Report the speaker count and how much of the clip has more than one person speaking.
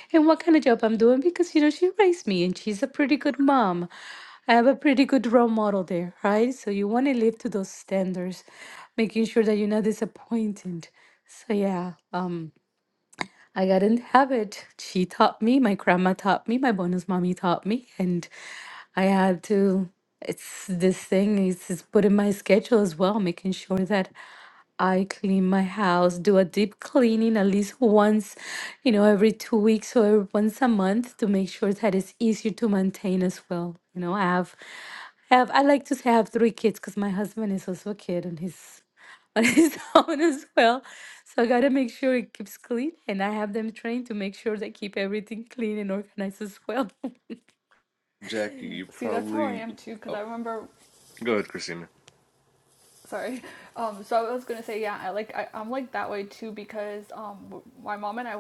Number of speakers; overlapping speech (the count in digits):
3, about 2%